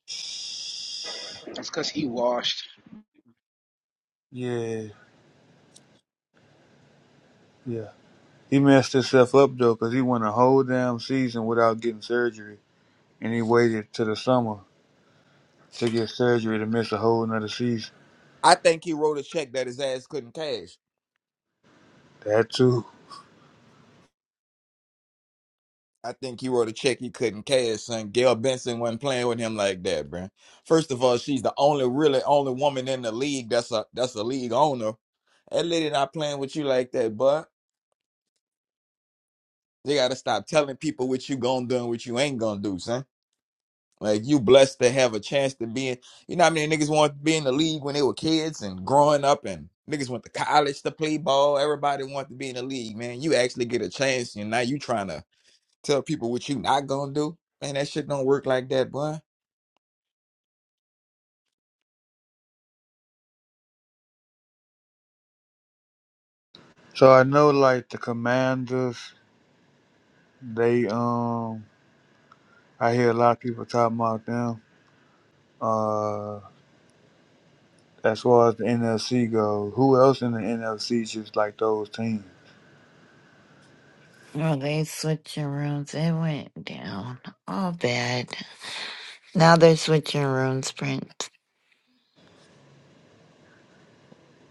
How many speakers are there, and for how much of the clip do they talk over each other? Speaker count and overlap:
four, no overlap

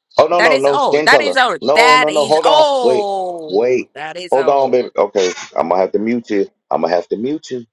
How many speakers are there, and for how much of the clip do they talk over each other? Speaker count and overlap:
two, about 42%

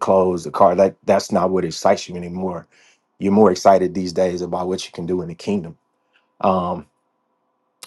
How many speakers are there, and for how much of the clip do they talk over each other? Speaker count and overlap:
one, no overlap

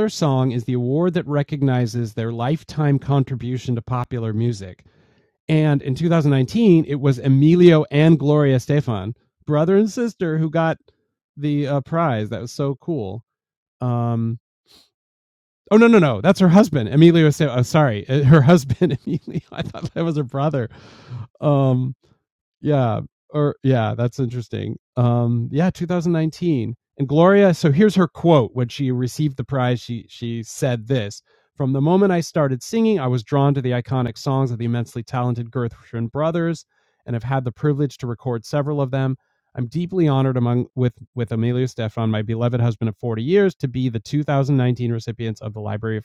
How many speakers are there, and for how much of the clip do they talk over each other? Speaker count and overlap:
one, no overlap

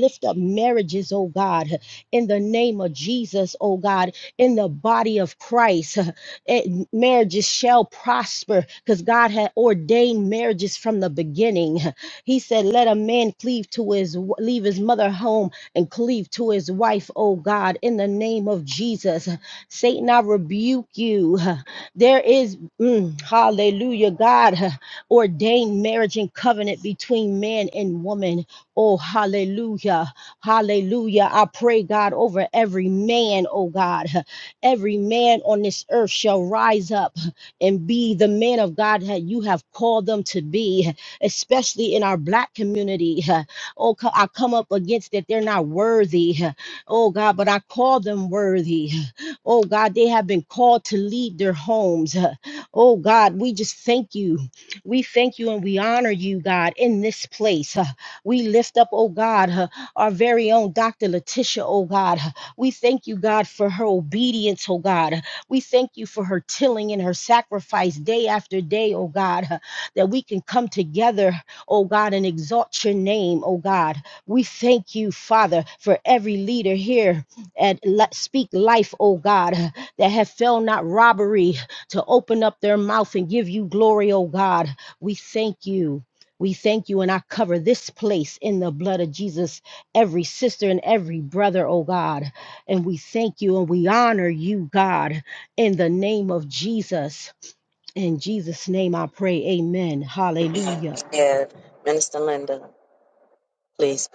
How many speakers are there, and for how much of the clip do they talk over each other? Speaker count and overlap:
two, about 1%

